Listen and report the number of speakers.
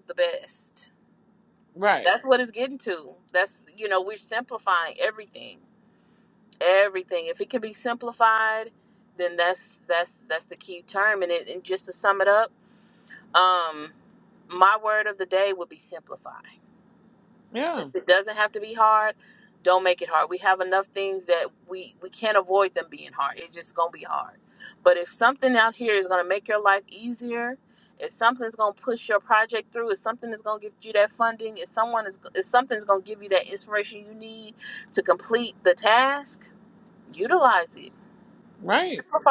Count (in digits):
2